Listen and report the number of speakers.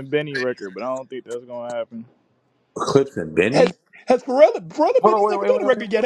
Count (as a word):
three